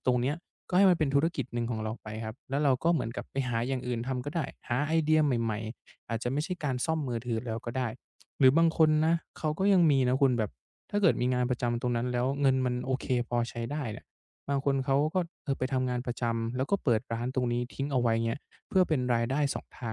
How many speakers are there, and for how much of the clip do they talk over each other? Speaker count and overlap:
1, no overlap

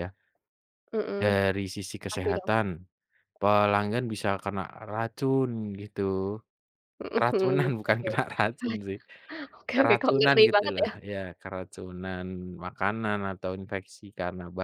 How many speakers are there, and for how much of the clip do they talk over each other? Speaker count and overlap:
2, about 19%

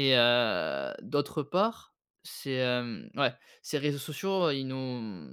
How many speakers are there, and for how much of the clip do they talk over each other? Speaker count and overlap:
1, no overlap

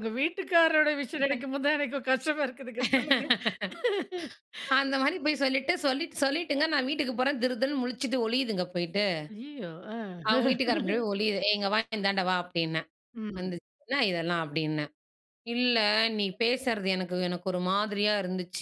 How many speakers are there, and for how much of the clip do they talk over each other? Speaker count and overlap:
2, about 1%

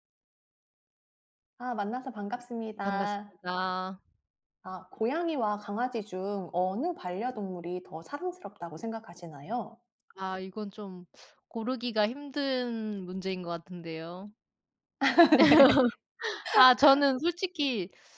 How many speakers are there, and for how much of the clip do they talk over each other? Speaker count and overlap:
2, about 1%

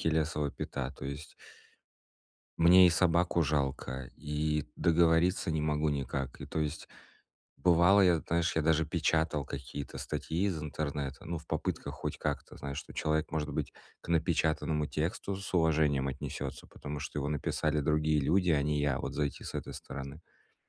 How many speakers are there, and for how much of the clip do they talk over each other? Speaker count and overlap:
1, no overlap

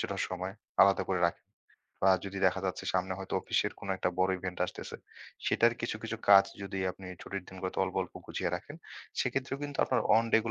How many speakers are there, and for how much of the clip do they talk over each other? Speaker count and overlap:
1, no overlap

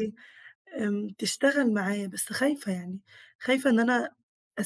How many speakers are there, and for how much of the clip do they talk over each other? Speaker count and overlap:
1, no overlap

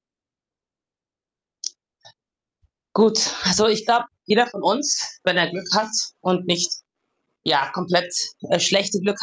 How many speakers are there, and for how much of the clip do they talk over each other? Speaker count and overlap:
1, no overlap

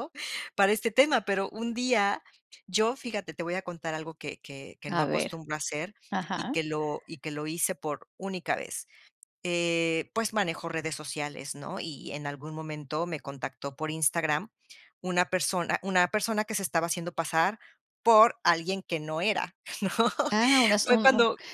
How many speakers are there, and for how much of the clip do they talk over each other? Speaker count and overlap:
2, about 5%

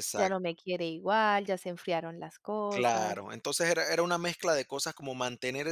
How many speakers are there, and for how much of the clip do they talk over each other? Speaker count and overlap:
2, about 10%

